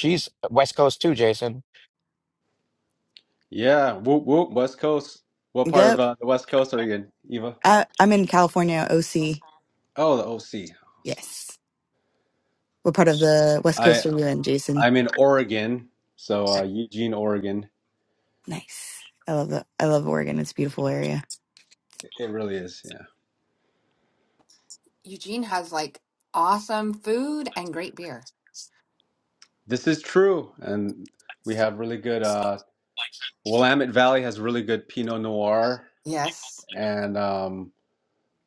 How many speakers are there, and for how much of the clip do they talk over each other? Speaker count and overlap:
four, about 2%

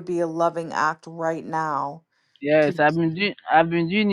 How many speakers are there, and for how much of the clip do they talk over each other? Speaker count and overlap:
two, about 2%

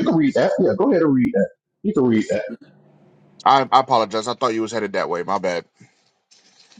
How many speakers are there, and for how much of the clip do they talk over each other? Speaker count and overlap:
two, no overlap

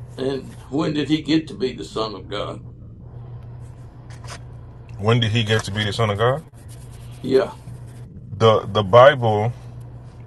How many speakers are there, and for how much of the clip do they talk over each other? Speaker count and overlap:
two, no overlap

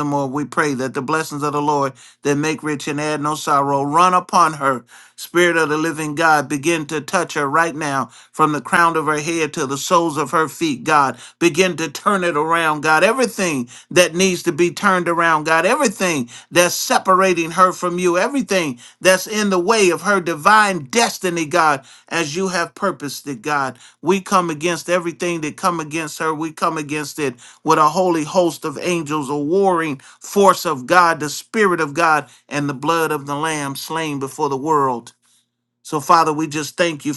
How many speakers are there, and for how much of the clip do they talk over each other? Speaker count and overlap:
one, no overlap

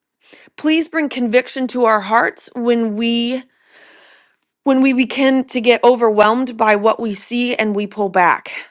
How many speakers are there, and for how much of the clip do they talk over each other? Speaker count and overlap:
one, no overlap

